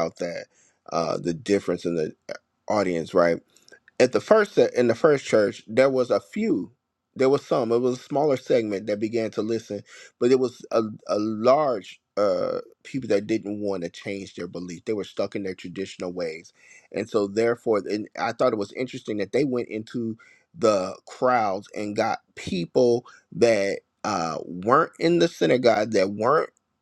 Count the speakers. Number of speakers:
1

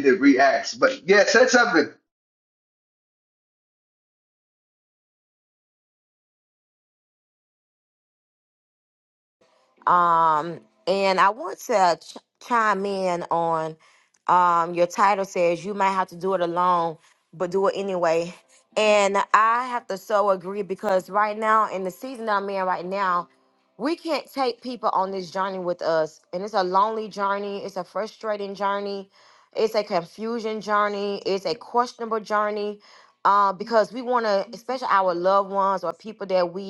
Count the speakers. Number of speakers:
2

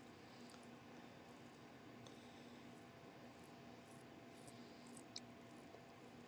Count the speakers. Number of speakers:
0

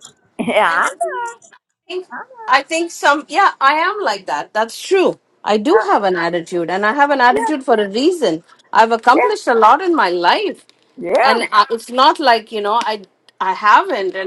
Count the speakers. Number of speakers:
2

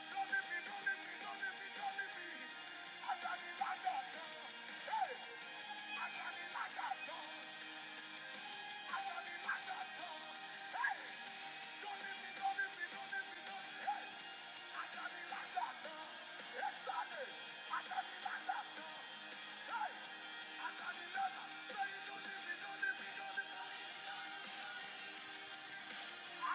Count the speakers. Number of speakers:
0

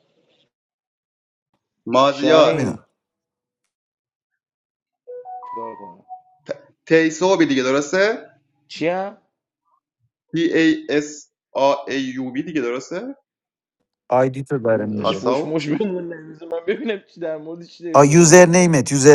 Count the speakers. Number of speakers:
3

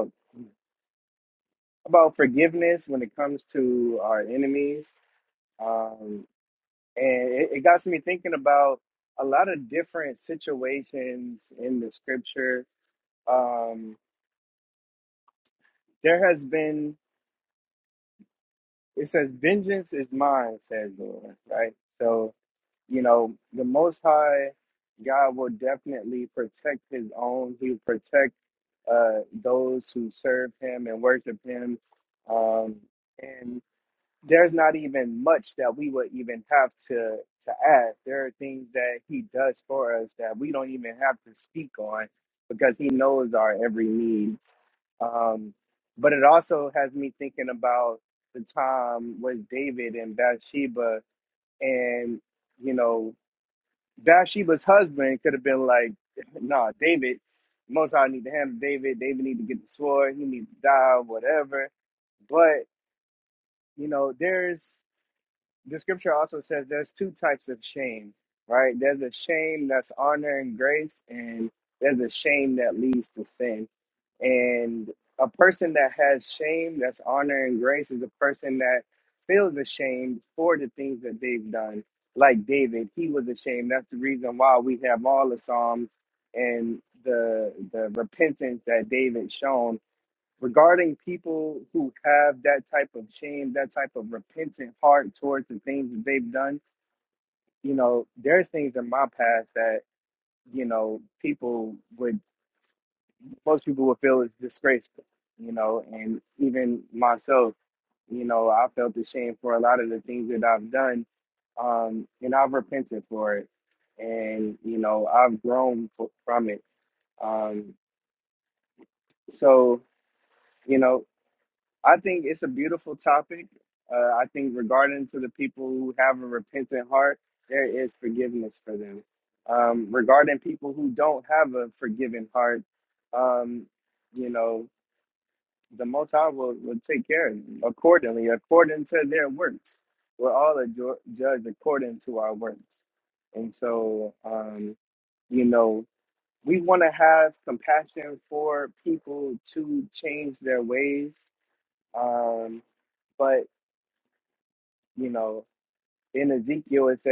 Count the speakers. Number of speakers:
1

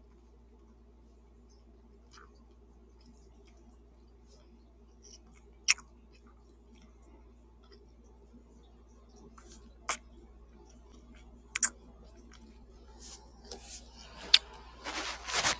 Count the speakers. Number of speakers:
0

